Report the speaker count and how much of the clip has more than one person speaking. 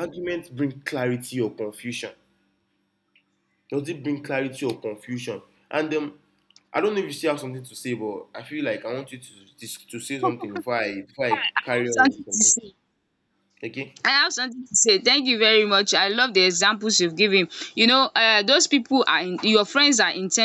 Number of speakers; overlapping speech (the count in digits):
2, about 5%